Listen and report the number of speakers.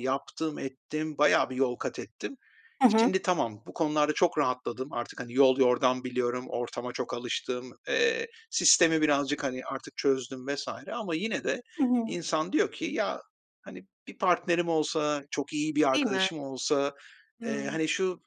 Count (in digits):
2